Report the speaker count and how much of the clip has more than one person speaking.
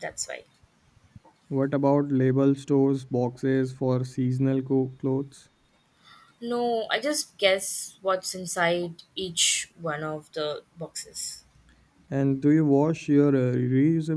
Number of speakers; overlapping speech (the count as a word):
two, no overlap